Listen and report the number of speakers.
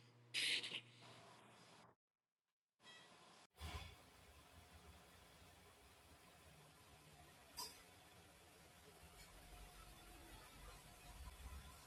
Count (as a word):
zero